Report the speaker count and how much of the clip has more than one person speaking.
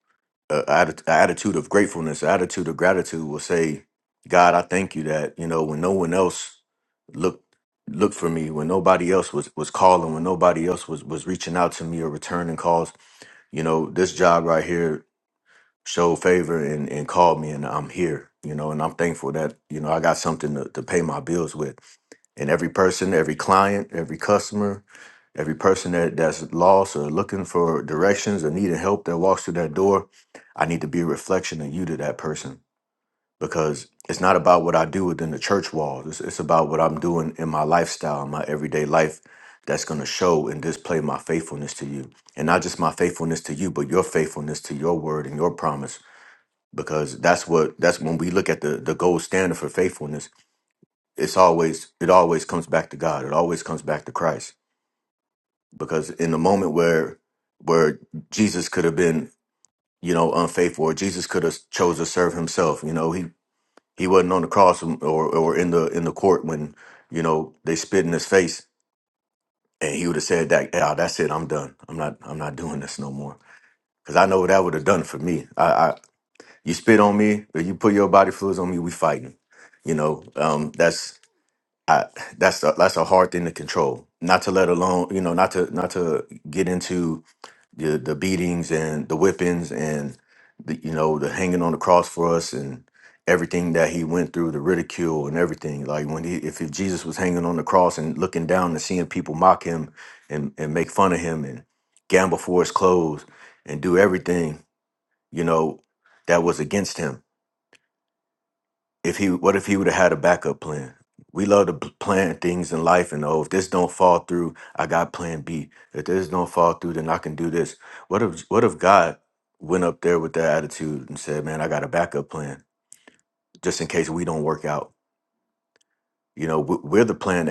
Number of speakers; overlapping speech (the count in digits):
1, no overlap